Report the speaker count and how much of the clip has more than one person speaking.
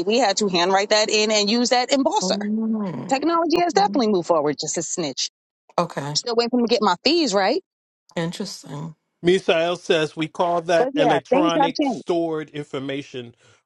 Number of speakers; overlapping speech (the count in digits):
3, about 14%